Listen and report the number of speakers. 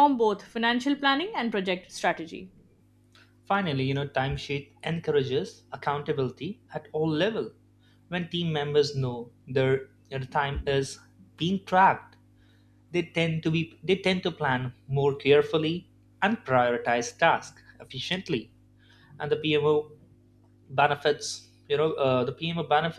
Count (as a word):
two